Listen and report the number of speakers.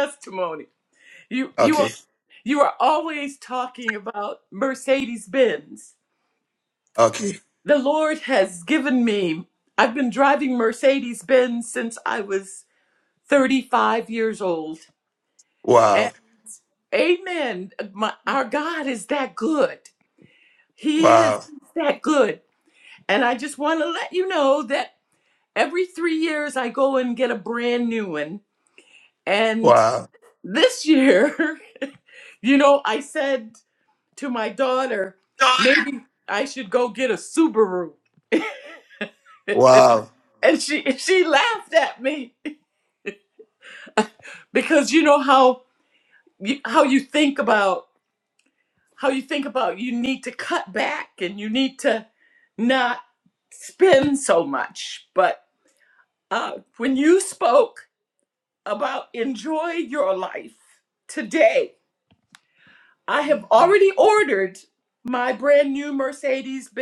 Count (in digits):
2